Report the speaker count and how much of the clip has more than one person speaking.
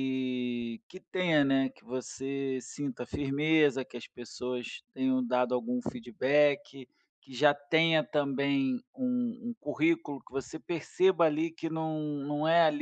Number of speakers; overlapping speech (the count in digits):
1, no overlap